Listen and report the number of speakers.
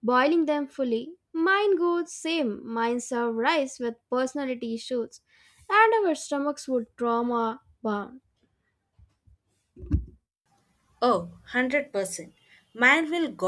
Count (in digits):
2